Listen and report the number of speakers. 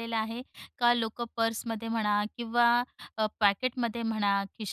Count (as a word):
one